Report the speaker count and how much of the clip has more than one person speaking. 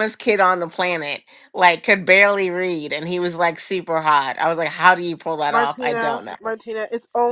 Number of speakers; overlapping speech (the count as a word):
two, about 12%